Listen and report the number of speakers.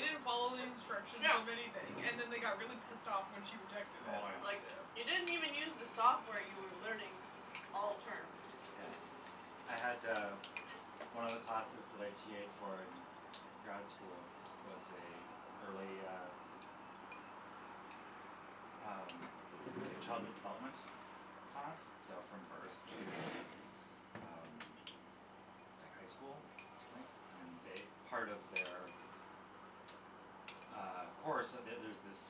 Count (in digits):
3